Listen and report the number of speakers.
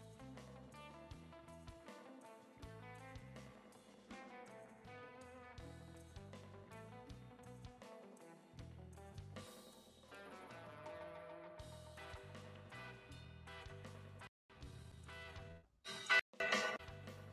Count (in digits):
0